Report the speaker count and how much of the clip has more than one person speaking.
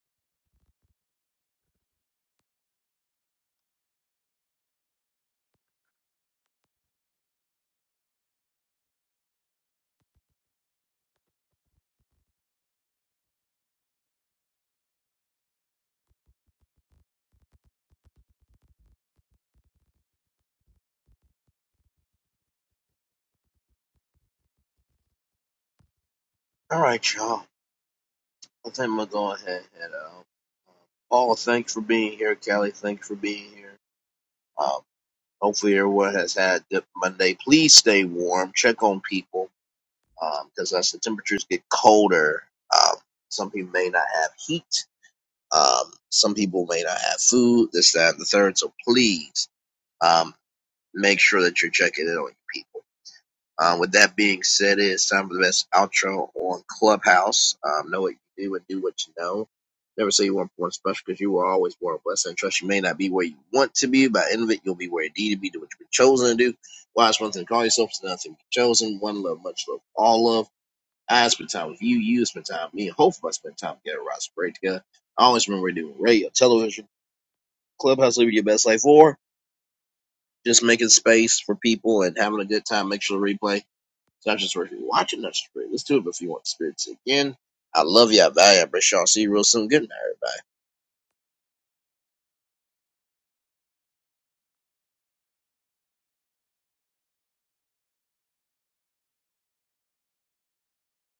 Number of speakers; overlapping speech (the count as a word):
one, no overlap